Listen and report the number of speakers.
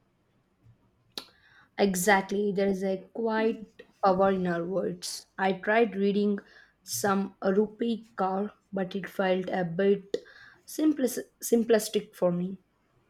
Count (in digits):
1